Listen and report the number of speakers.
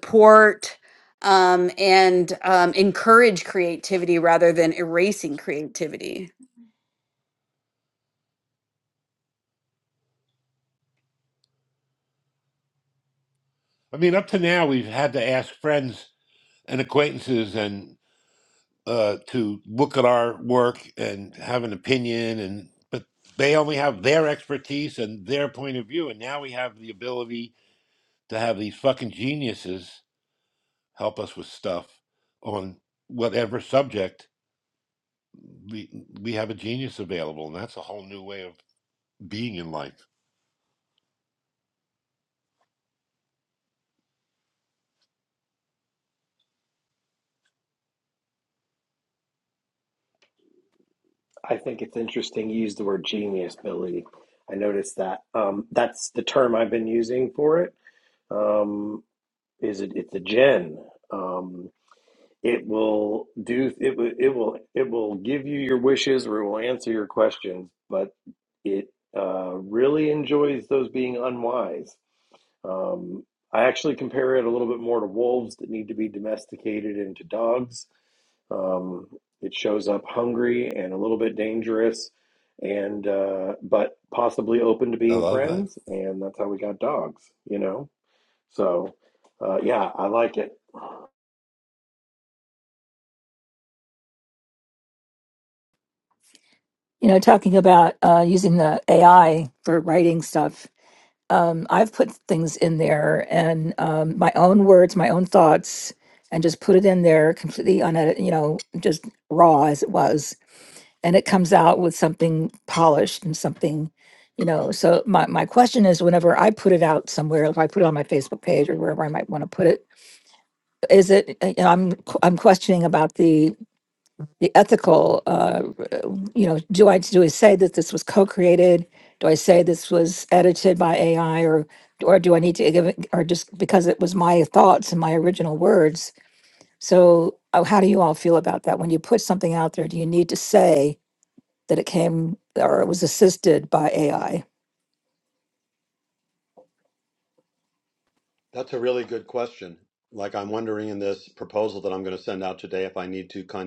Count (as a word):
five